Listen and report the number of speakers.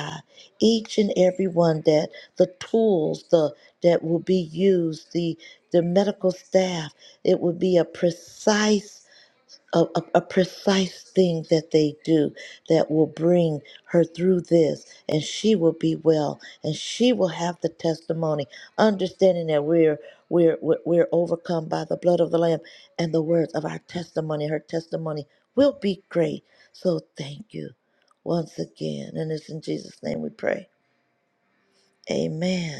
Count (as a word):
one